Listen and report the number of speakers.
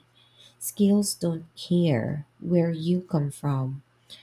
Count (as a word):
one